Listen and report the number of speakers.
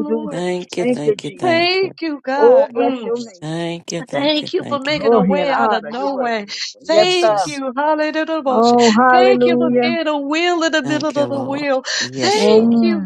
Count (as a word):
three